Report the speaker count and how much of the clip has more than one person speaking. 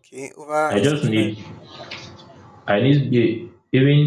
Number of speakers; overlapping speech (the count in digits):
2, about 15%